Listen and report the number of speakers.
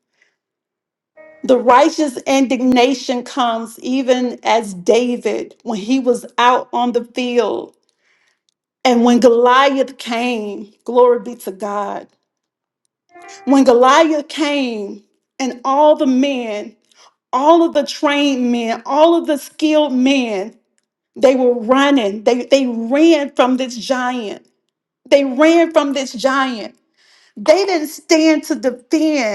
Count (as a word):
one